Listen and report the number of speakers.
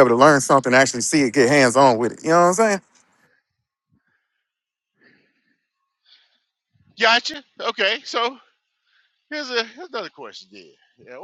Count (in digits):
2